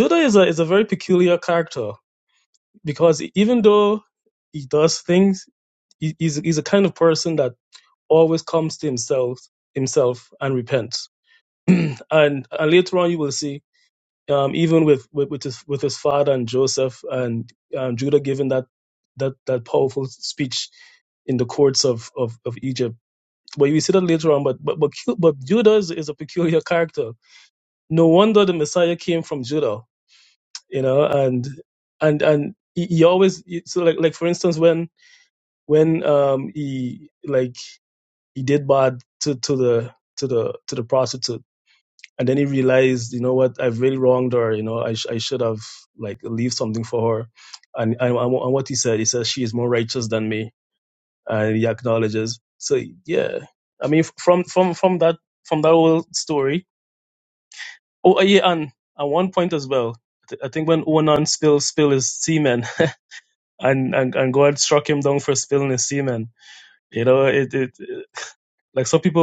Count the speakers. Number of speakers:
1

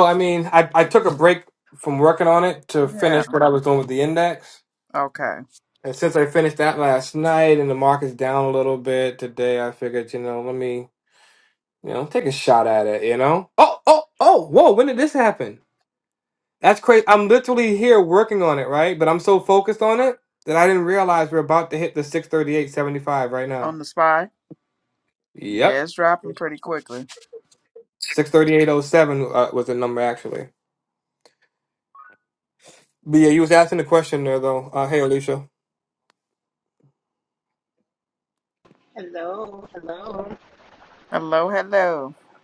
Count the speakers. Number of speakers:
3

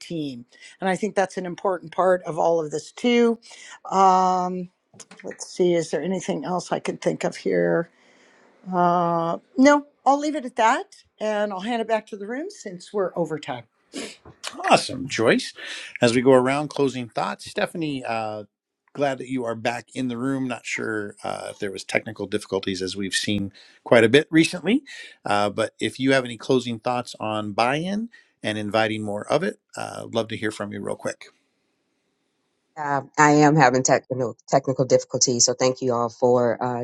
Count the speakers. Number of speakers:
3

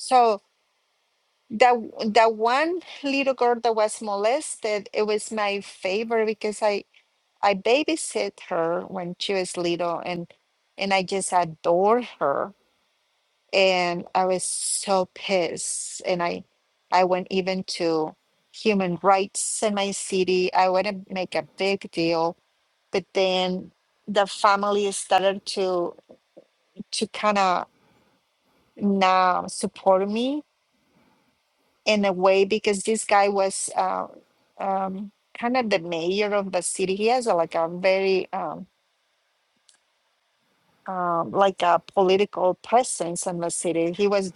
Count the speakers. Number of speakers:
1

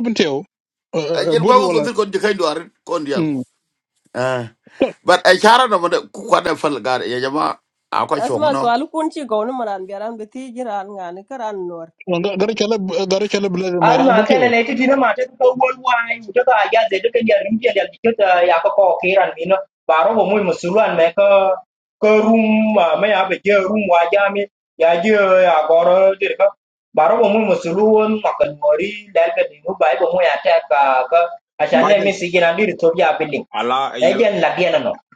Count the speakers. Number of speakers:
5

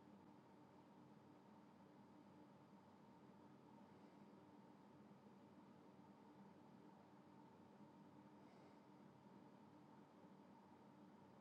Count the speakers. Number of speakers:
0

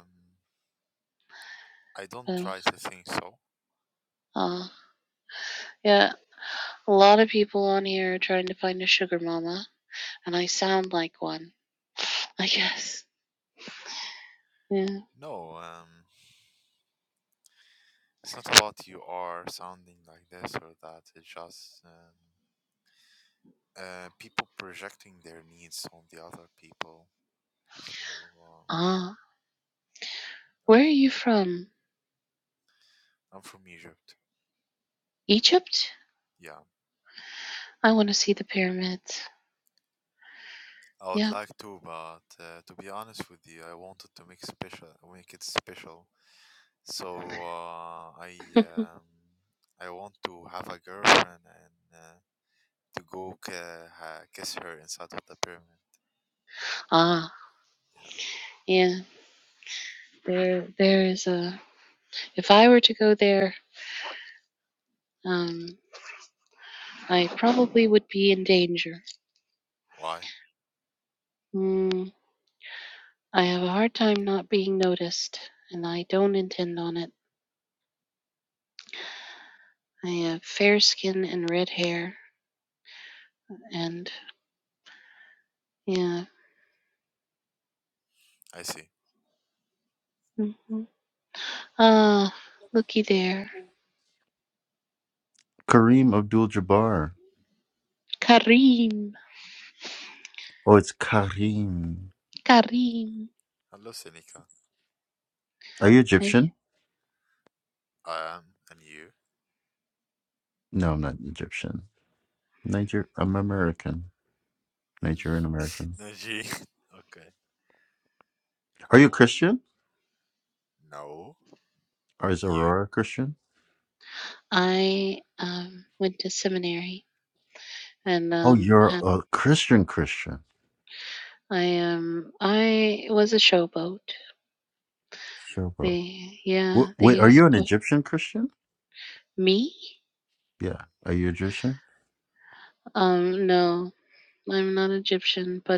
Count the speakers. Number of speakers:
3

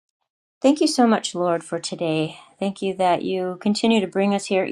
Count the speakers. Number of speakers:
1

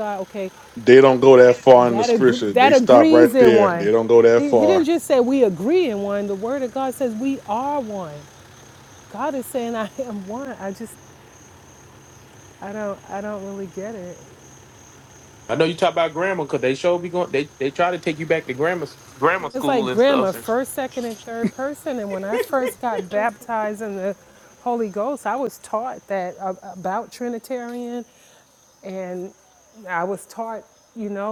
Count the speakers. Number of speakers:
3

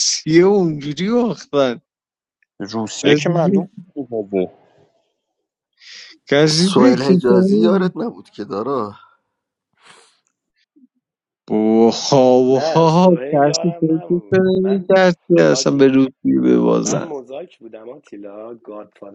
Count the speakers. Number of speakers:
4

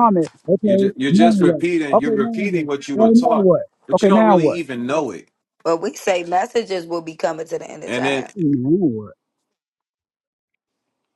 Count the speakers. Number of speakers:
3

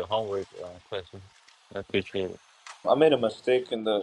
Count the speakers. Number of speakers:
2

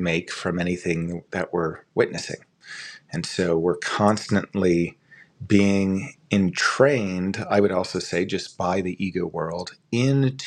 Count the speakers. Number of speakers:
1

